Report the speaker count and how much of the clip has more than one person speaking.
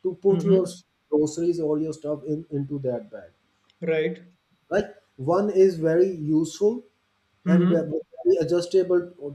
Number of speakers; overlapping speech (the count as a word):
two, about 9%